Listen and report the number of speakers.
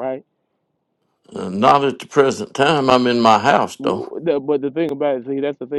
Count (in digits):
2